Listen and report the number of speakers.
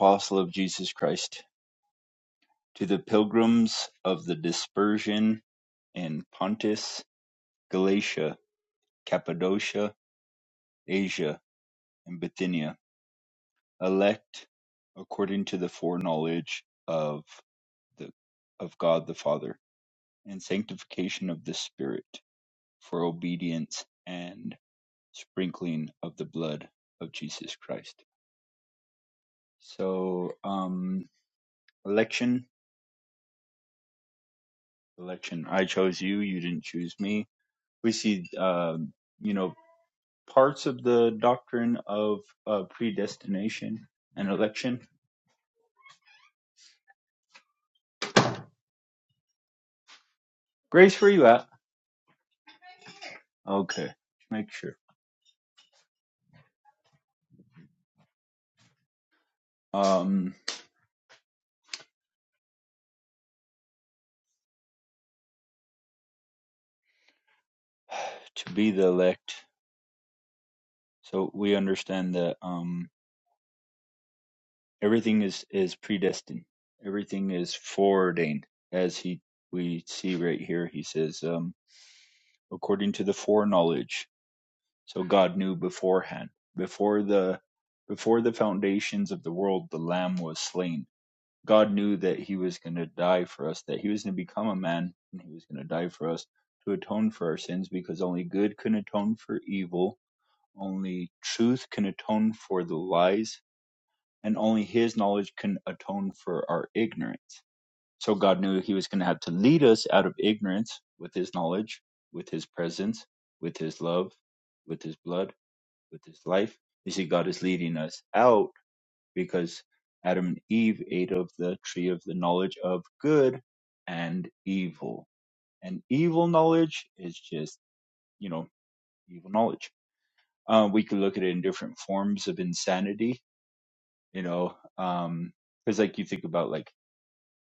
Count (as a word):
one